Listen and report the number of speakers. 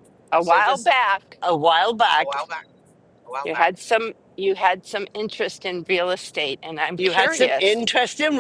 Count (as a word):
three